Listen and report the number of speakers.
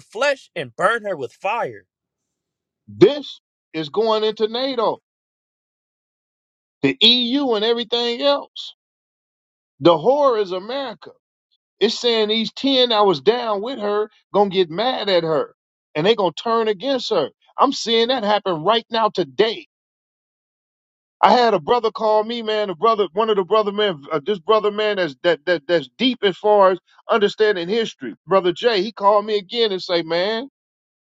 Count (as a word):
two